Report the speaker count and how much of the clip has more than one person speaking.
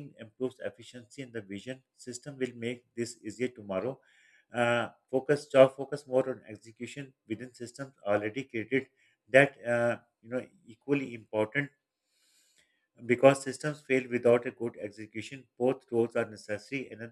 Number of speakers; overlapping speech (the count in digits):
1, no overlap